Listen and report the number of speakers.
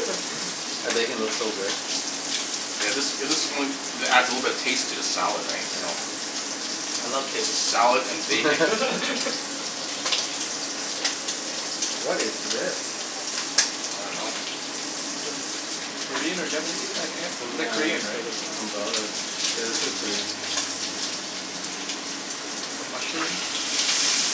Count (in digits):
3